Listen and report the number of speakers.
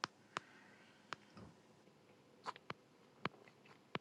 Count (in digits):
0